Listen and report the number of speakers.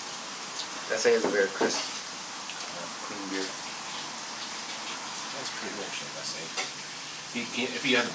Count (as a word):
two